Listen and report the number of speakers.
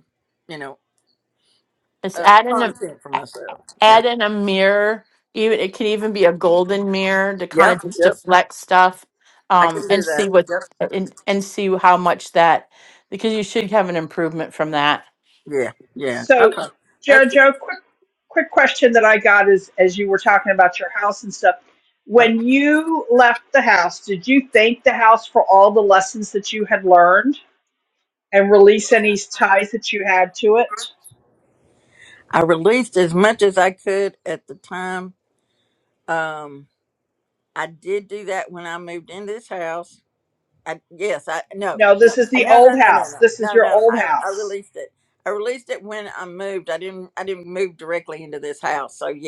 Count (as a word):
three